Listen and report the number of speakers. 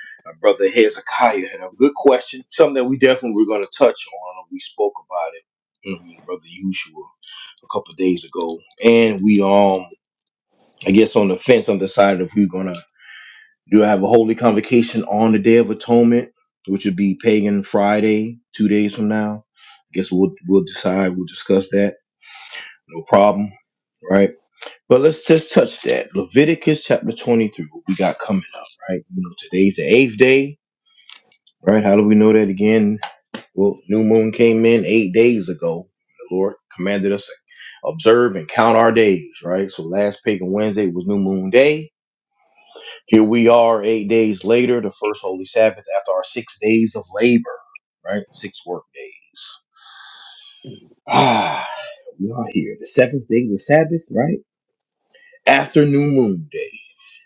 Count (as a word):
one